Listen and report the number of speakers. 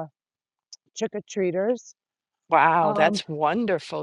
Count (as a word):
two